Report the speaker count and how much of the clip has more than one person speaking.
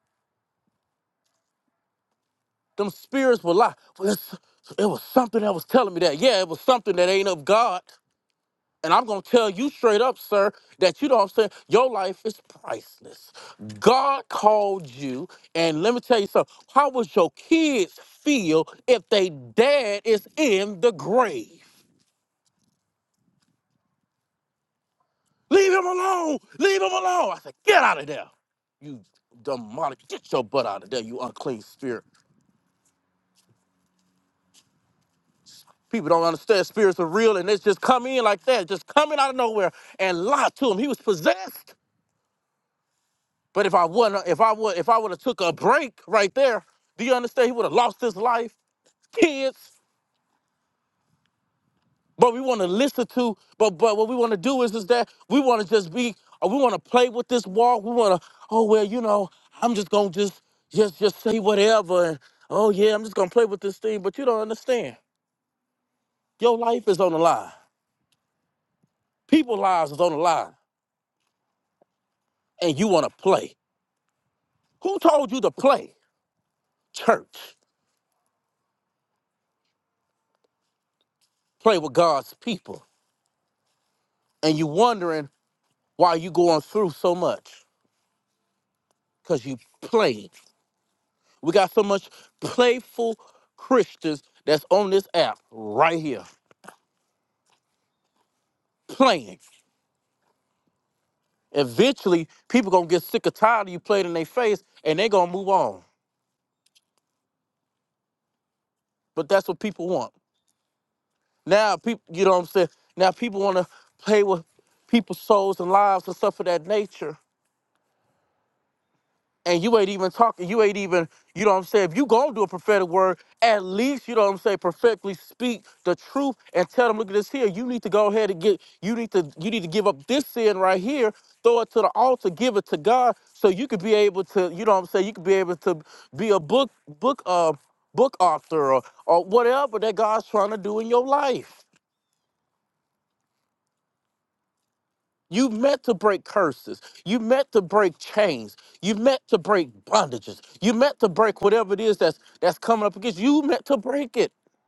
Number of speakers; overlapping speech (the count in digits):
1, no overlap